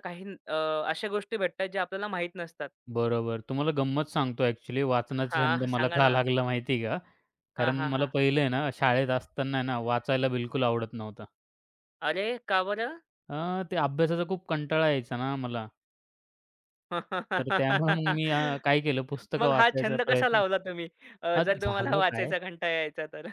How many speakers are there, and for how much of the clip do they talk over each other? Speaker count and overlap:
two, about 15%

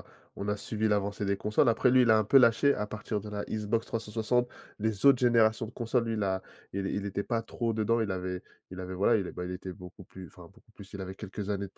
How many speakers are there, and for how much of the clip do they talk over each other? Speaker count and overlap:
one, no overlap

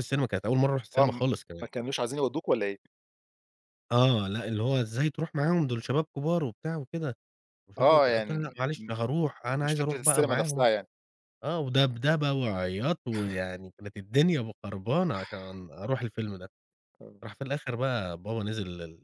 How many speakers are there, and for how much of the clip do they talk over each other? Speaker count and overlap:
two, about 7%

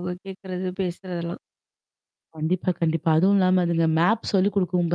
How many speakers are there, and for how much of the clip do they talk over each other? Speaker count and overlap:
two, no overlap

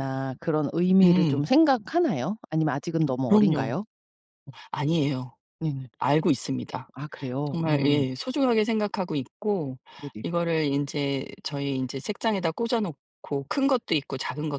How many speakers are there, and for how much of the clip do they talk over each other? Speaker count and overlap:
two, about 9%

